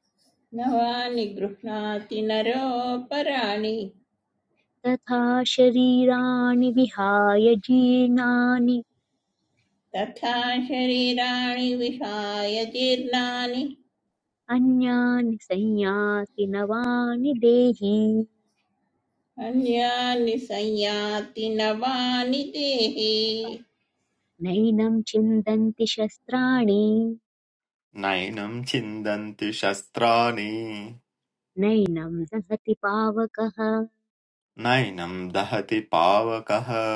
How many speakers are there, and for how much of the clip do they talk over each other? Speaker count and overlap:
3, no overlap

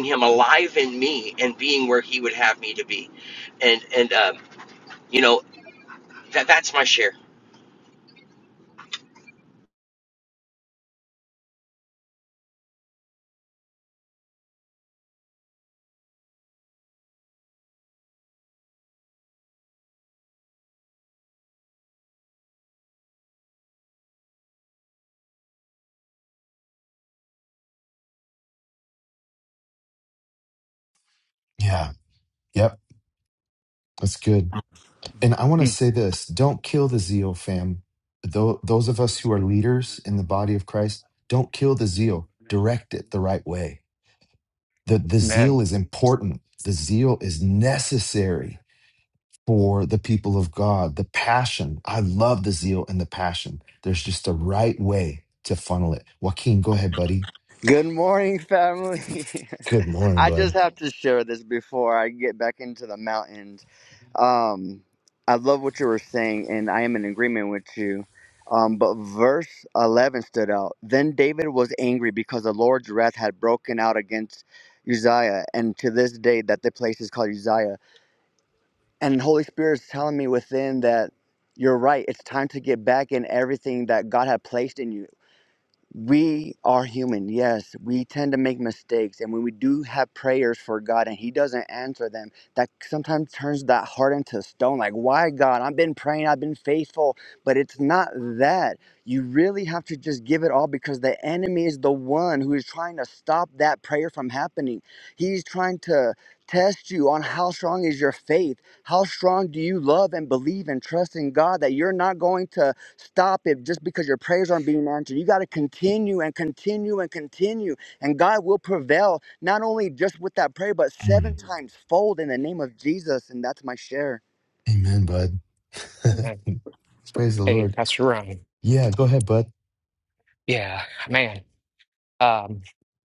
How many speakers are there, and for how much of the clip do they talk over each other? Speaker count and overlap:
4, about 1%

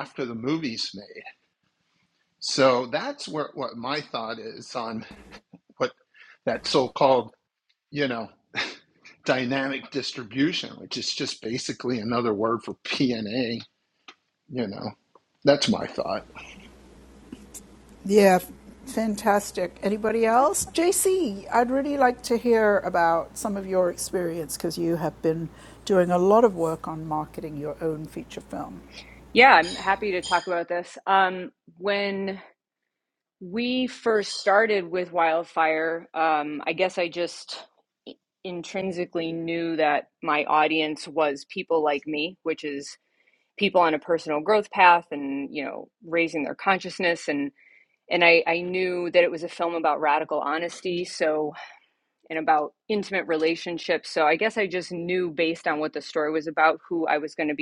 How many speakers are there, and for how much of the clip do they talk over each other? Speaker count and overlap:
3, no overlap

